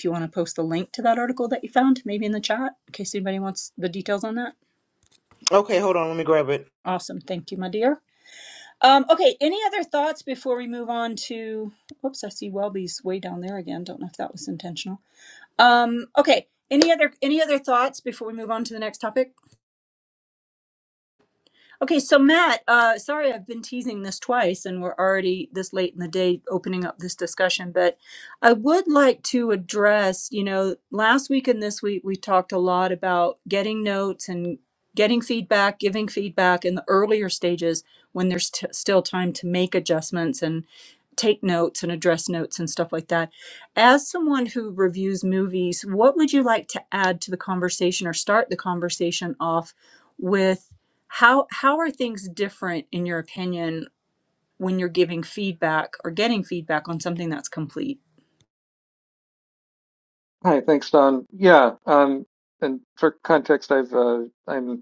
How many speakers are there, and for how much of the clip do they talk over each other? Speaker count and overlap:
3, no overlap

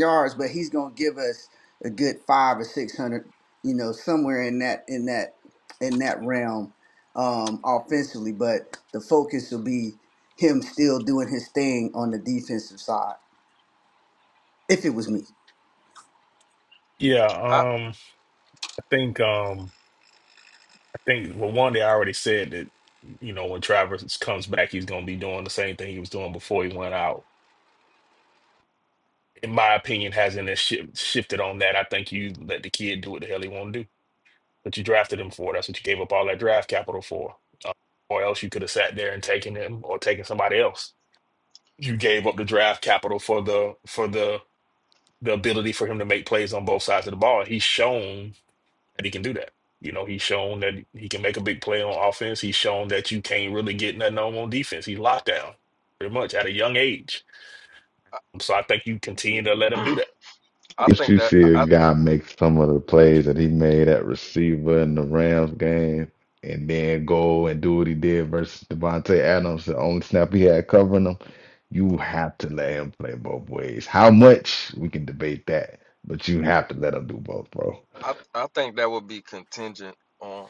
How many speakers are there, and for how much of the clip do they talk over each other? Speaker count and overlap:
4, about 1%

